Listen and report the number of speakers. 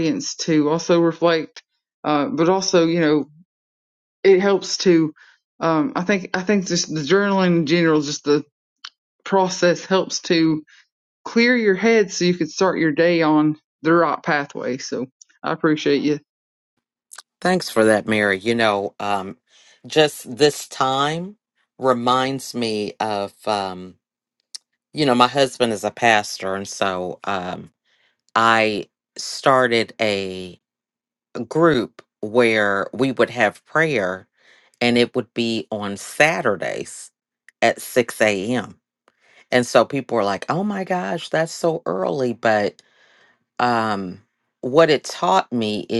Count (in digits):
2